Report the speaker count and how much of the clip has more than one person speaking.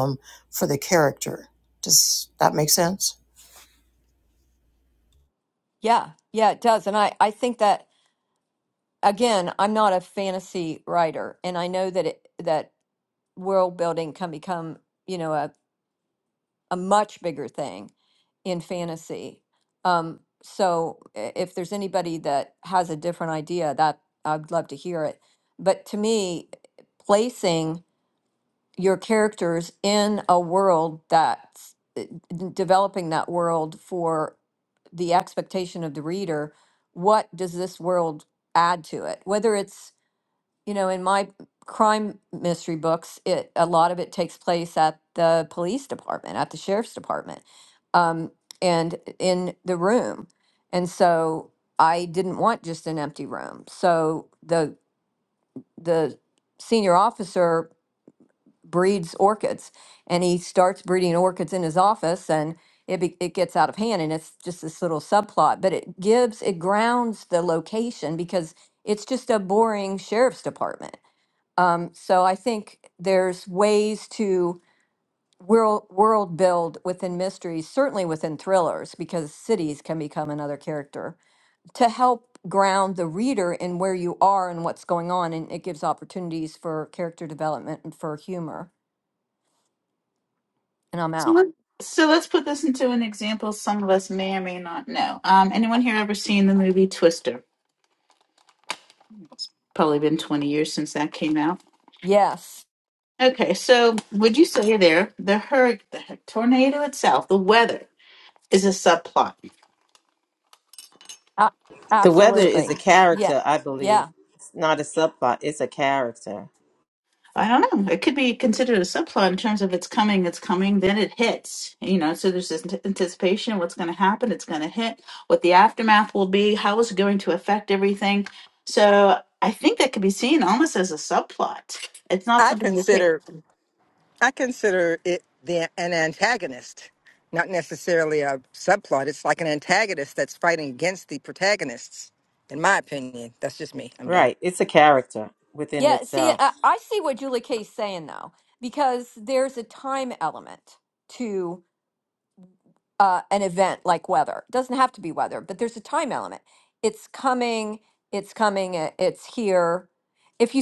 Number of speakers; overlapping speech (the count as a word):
five, about 2%